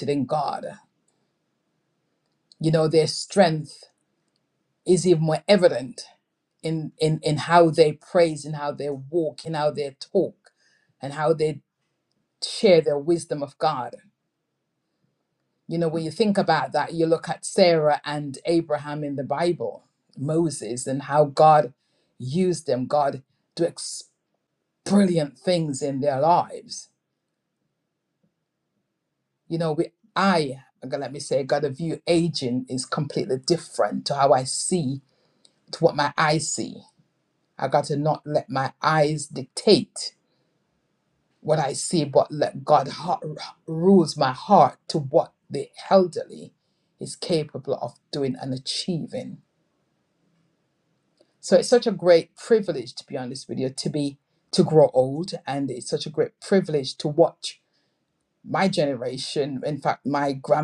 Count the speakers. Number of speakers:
one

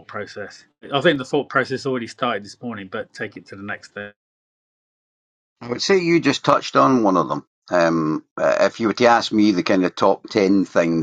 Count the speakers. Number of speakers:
two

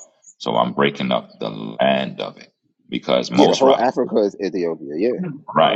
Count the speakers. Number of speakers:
two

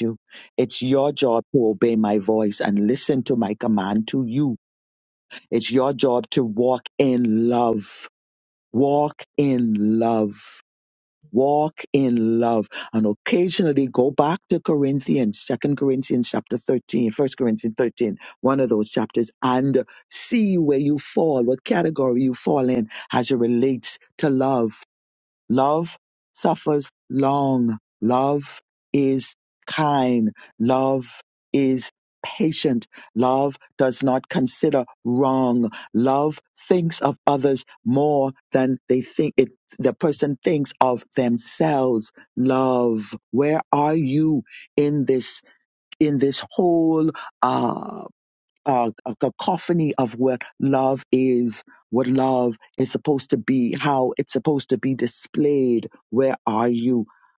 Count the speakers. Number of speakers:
one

